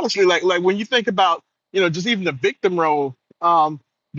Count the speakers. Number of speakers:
one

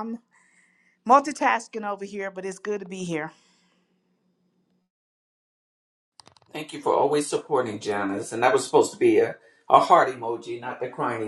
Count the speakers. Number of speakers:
two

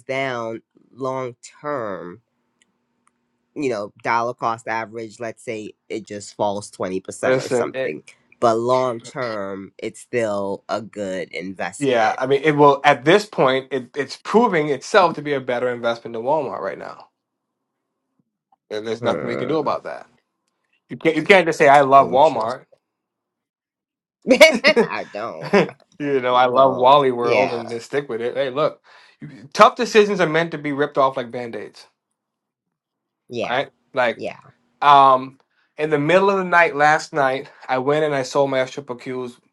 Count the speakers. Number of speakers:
two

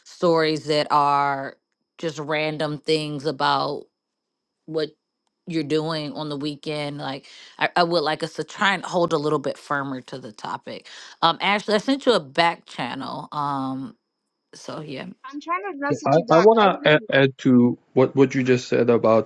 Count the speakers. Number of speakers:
three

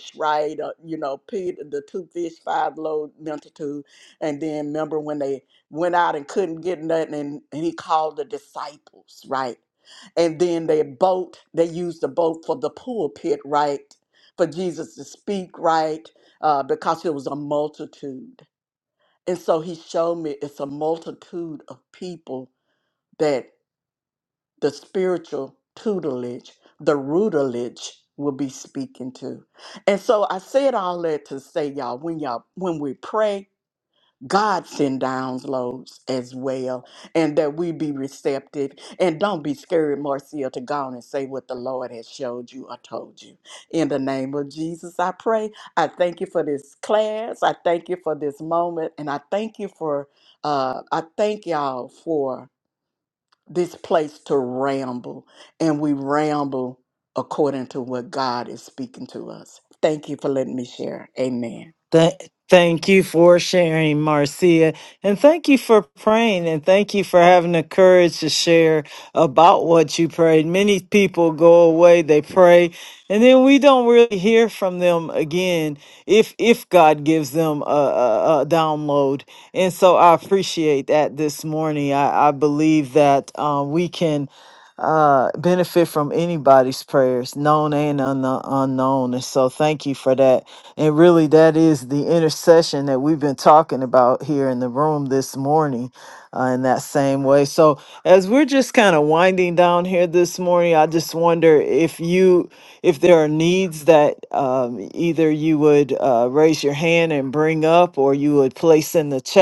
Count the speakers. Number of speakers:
two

